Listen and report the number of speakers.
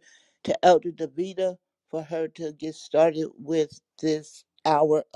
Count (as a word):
one